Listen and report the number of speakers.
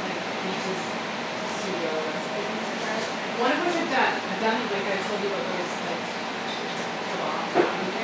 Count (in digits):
1